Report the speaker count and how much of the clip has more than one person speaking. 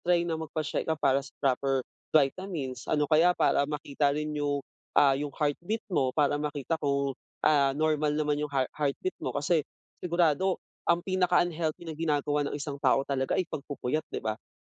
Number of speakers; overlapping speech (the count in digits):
1, no overlap